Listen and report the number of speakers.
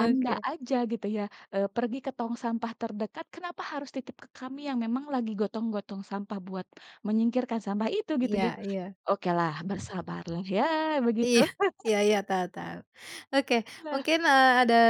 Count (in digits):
2